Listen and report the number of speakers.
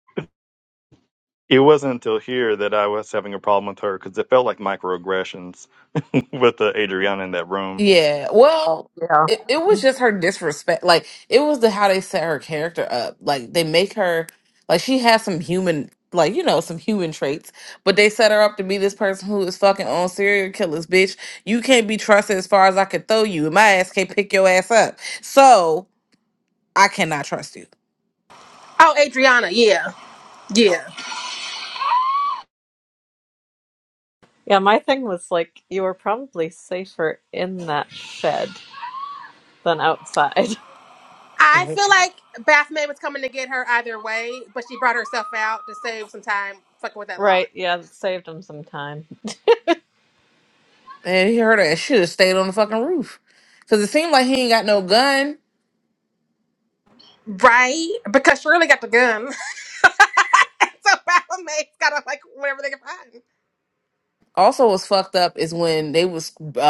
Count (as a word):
four